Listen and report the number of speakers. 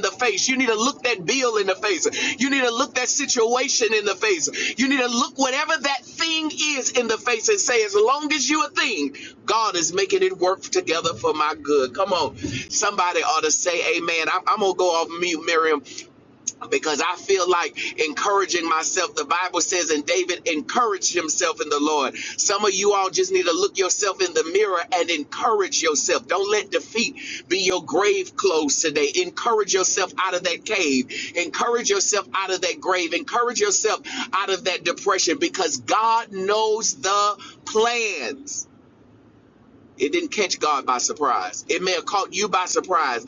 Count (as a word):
one